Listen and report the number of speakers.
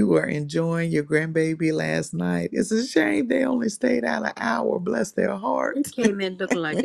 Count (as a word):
two